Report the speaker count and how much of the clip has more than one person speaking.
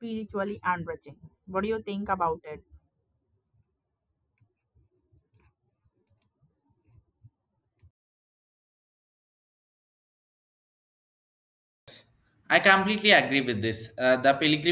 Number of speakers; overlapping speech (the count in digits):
2, no overlap